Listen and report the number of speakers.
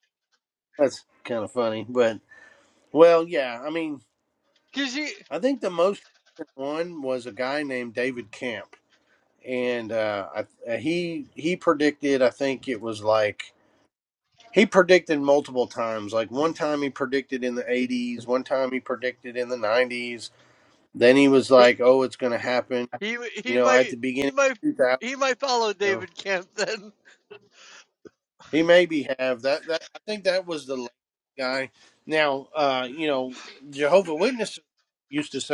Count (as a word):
two